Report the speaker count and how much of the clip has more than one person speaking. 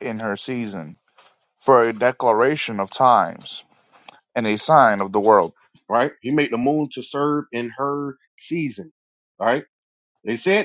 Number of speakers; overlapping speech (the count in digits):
2, no overlap